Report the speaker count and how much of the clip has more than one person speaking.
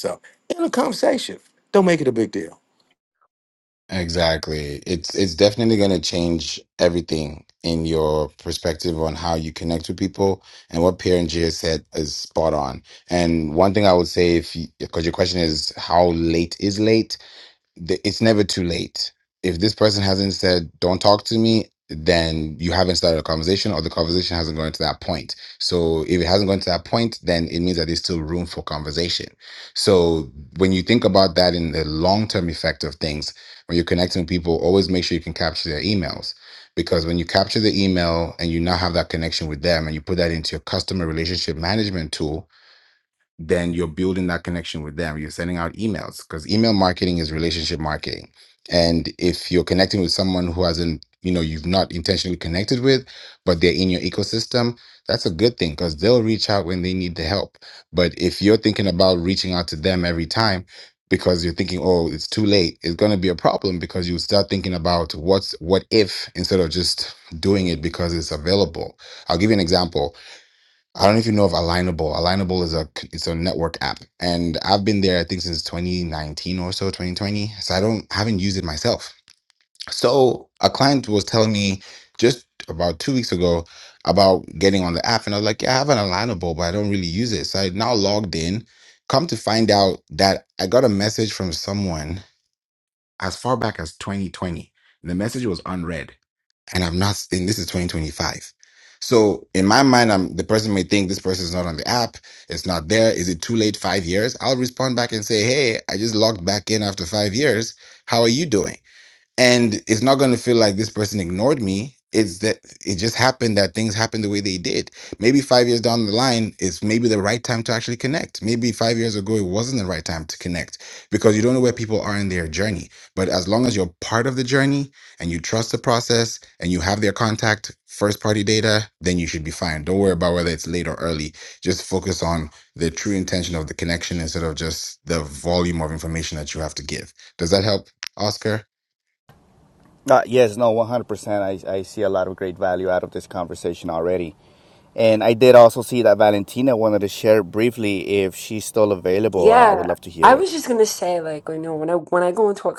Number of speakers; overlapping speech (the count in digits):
4, about 1%